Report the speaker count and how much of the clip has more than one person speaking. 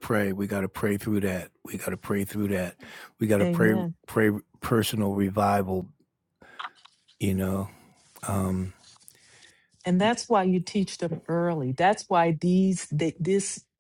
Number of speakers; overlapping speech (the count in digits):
2, about 4%